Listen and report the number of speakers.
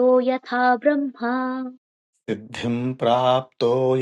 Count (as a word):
two